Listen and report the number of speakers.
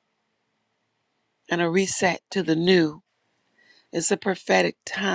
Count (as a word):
one